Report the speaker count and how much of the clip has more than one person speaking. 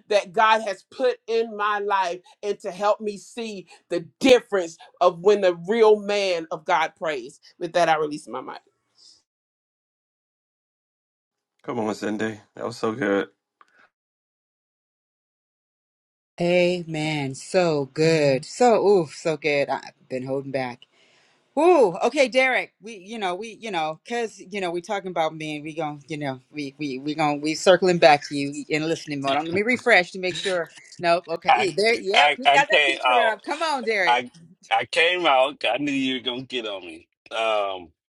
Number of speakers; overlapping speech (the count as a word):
four, about 4%